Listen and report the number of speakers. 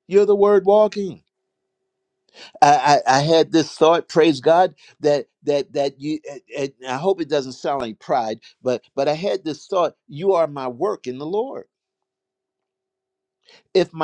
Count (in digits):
1